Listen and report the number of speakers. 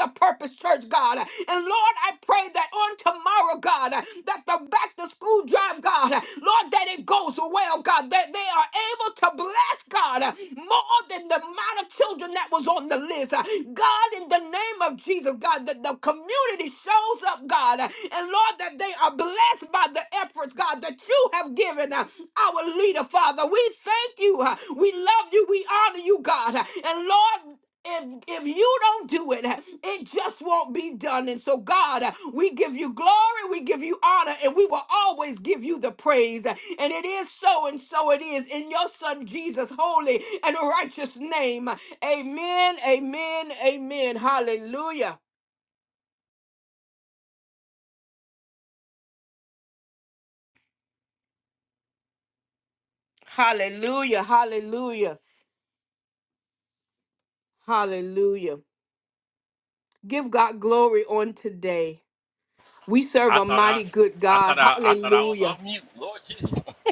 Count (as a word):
two